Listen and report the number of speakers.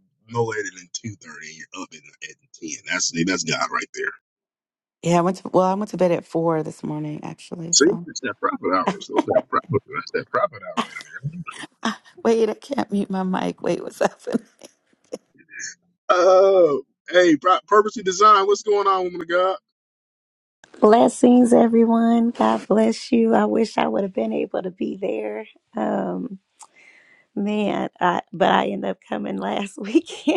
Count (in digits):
3